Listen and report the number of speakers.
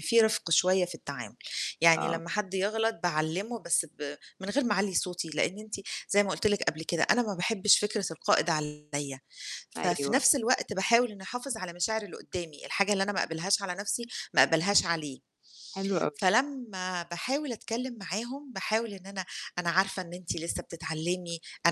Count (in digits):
2